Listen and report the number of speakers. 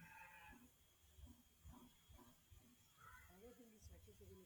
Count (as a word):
zero